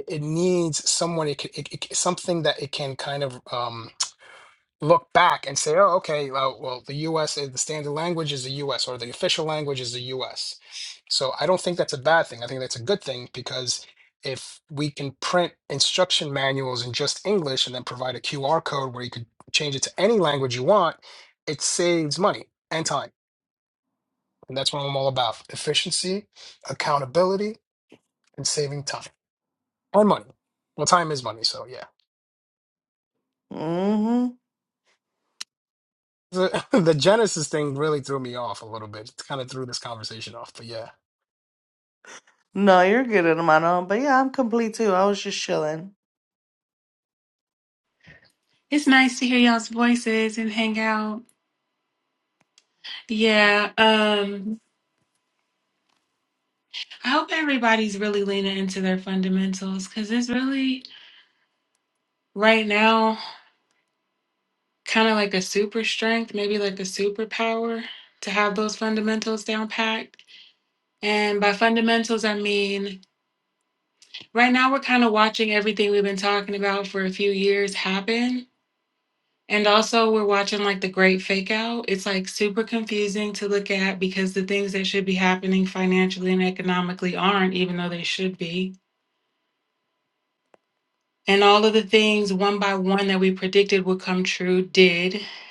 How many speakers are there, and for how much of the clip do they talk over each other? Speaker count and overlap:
3, no overlap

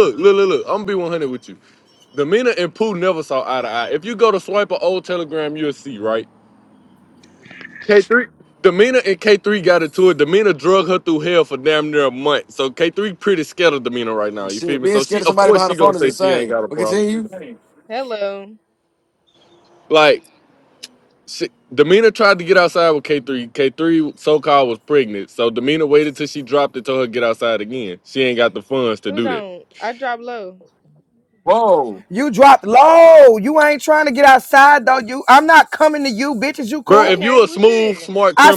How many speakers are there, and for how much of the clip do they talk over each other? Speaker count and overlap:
4, about 11%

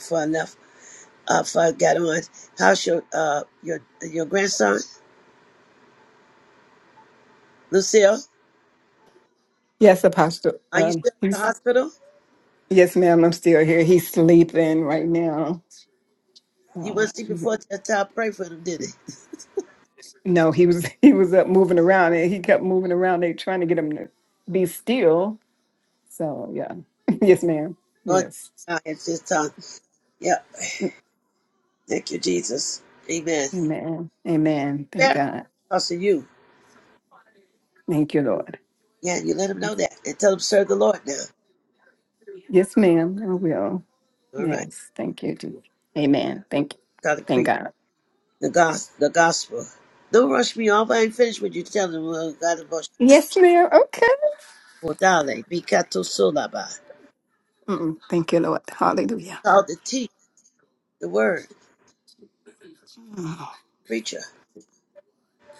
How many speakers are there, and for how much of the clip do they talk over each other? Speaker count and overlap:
2, about 3%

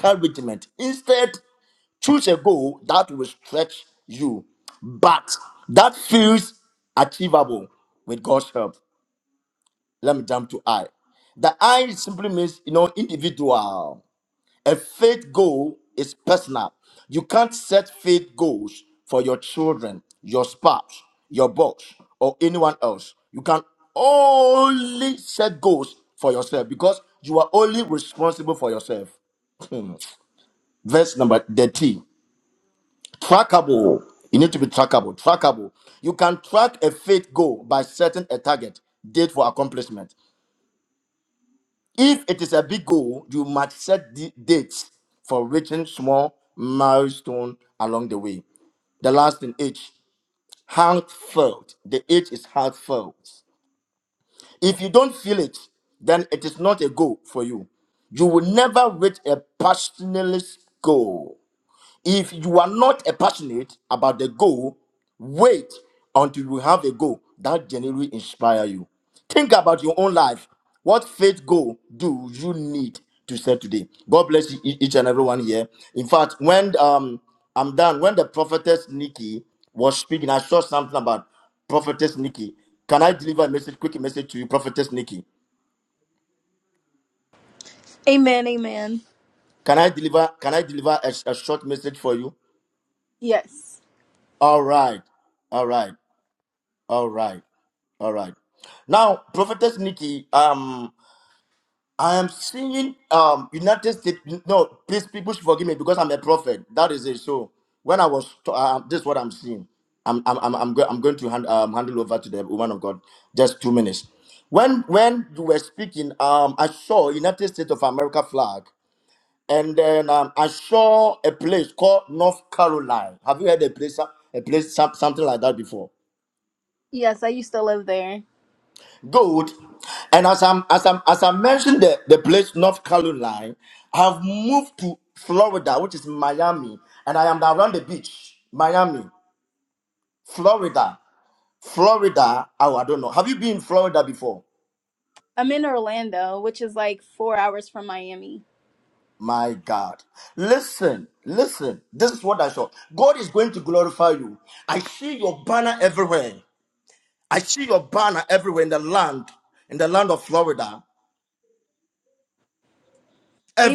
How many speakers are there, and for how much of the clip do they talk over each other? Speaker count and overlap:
2, under 1%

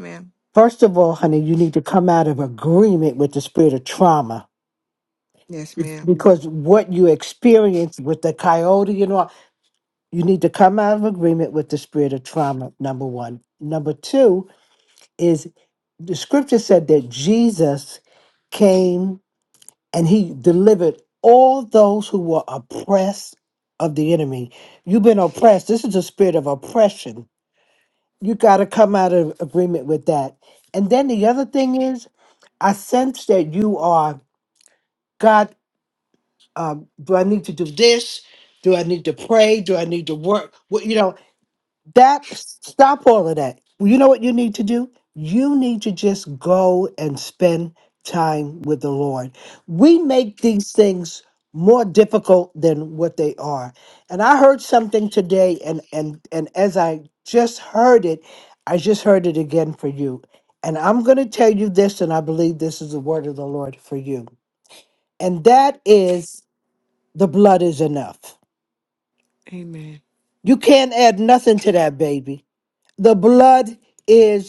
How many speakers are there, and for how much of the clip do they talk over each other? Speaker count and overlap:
2, under 1%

